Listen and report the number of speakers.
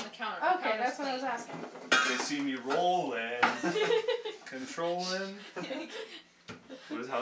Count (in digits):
3